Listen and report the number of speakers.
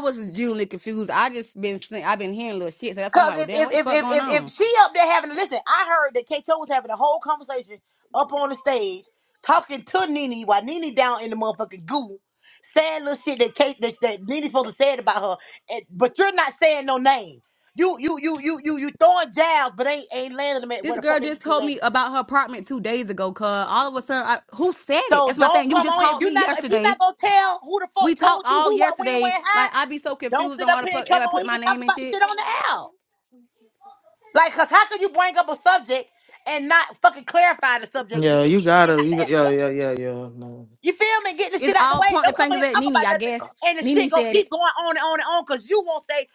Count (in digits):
3